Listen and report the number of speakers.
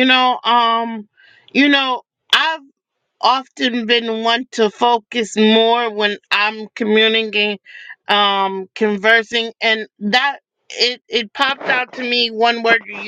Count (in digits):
1